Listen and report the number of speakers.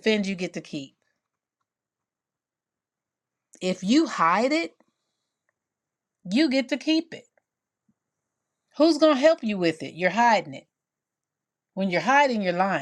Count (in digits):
1